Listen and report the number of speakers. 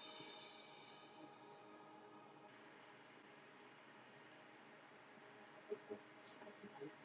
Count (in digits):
0